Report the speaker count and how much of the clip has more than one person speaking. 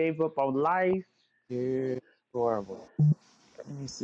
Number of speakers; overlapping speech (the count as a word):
two, no overlap